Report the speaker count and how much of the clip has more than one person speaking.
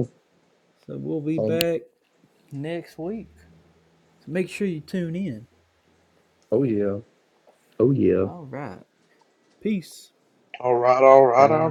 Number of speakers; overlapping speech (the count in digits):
3, about 5%